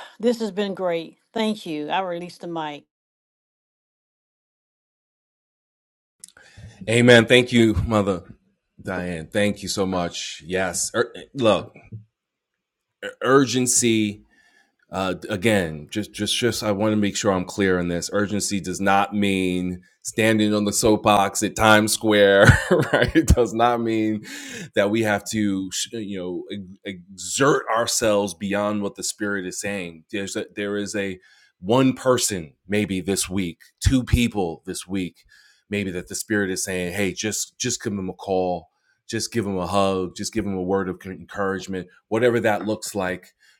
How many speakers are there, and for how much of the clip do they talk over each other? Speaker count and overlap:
2, no overlap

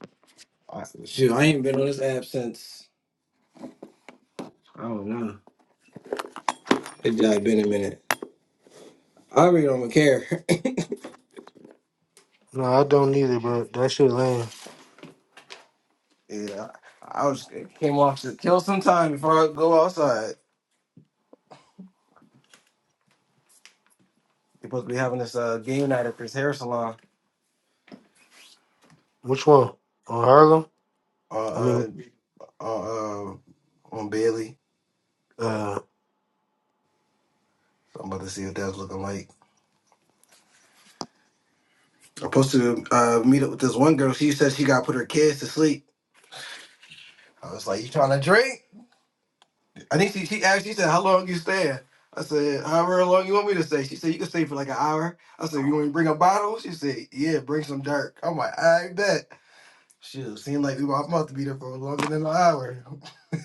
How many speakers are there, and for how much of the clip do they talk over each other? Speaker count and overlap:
2, under 1%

